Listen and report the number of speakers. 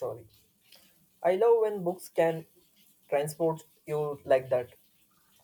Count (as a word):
one